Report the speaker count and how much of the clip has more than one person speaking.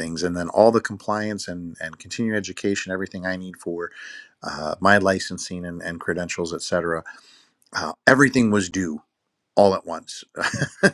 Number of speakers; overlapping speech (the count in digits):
1, no overlap